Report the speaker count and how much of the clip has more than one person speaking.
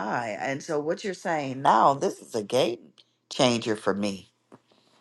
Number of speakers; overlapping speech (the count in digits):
1, no overlap